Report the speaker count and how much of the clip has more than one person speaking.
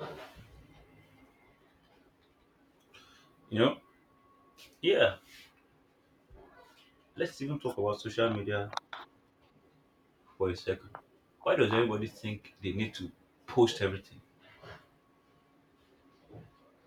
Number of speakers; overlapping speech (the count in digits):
1, no overlap